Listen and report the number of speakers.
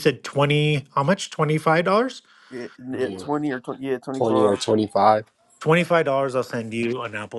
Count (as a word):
three